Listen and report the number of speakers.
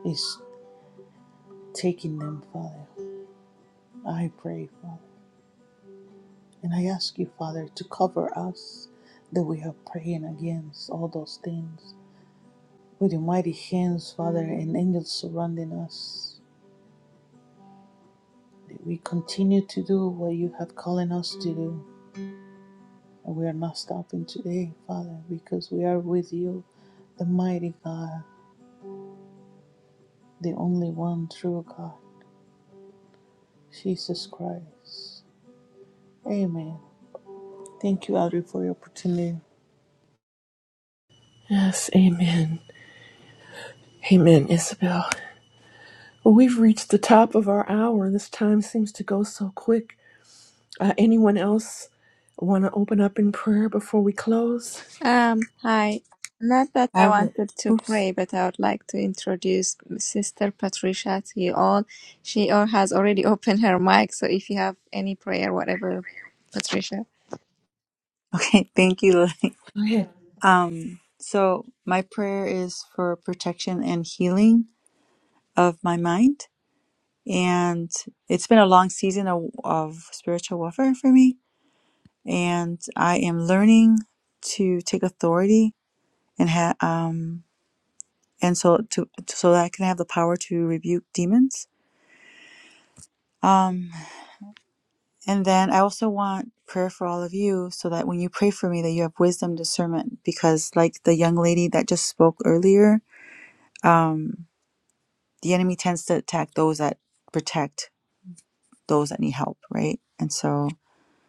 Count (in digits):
4